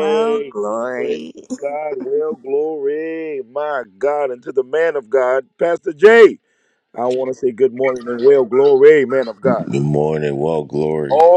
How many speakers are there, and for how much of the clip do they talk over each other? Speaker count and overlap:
3, about 7%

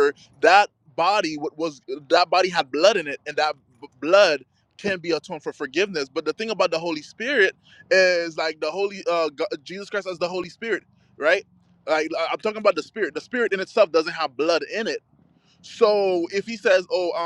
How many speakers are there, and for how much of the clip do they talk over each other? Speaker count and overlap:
1, no overlap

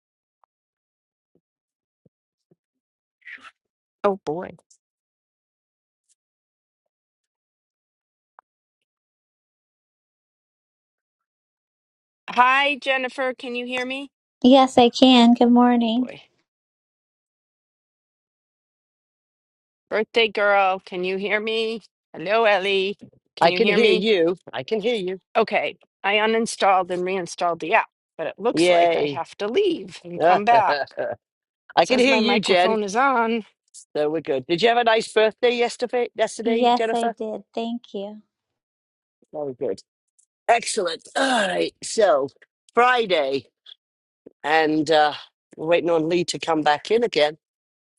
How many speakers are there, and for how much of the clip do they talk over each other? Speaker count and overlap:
3, about 7%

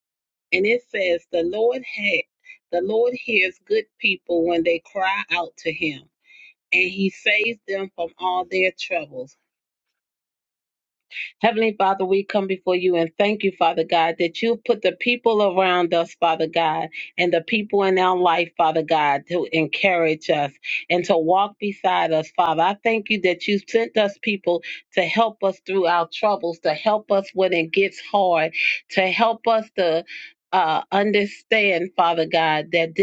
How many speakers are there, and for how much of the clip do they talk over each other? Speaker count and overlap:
1, no overlap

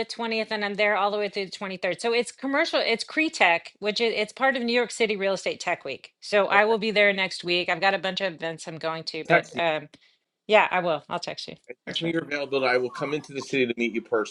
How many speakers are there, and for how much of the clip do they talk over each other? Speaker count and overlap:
2, about 6%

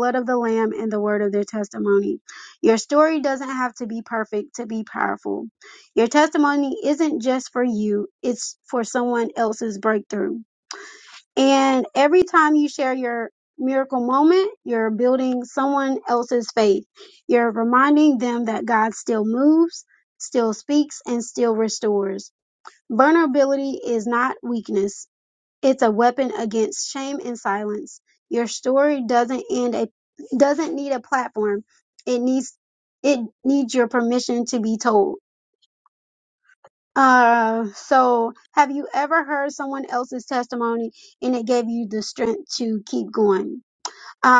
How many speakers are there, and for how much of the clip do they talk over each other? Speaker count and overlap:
1, no overlap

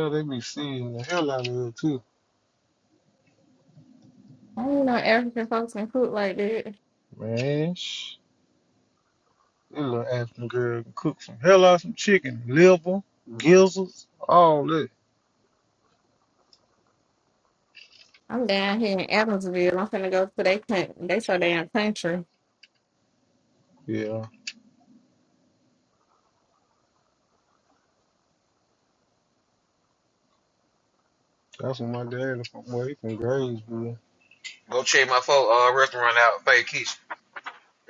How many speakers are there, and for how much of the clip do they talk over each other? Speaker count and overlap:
3, no overlap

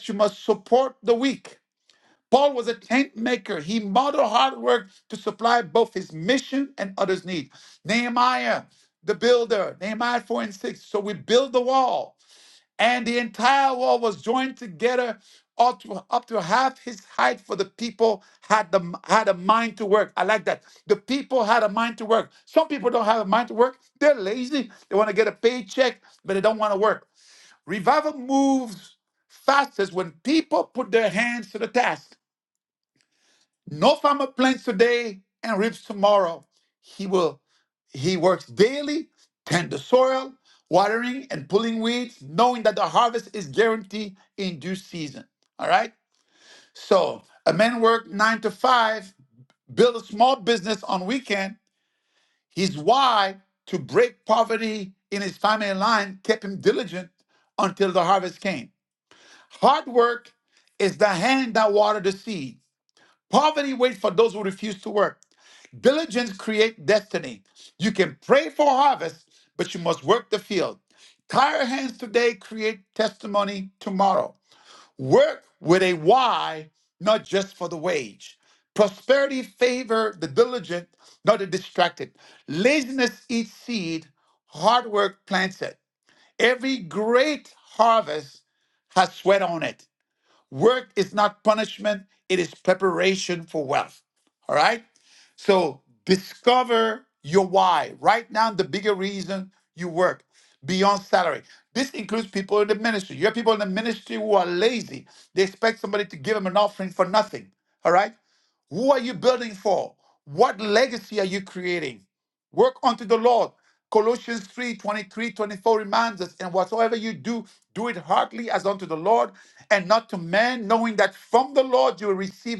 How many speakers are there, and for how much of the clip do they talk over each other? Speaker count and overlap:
1, no overlap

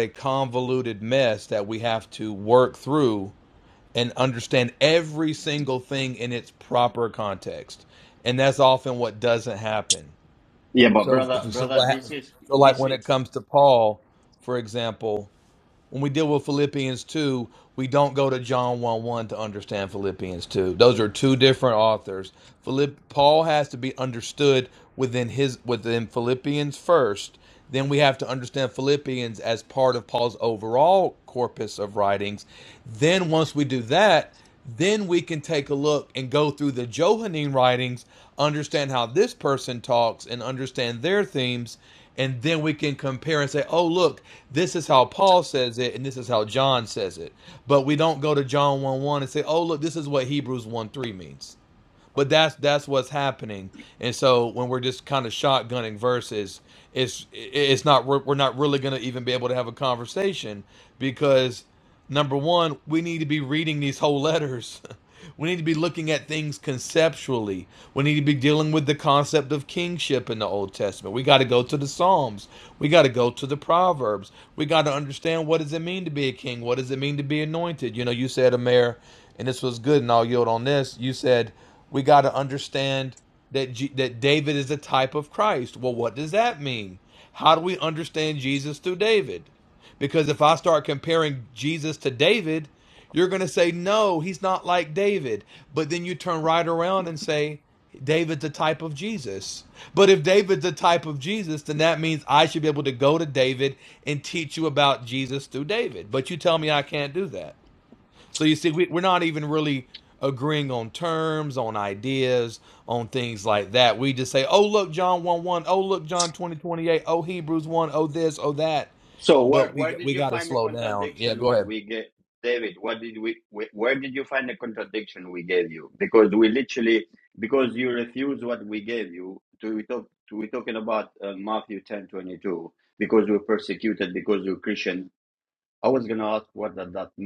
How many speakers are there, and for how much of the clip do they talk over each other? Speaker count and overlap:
2, about 3%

